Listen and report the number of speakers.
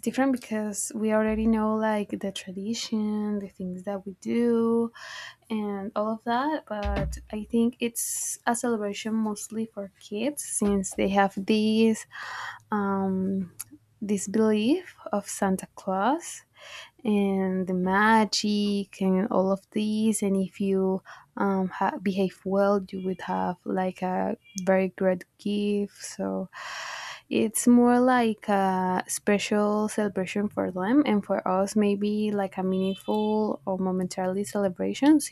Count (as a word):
one